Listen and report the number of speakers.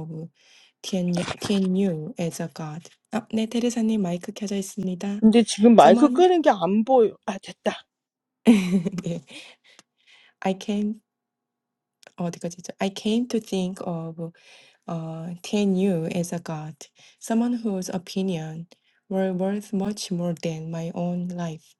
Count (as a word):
two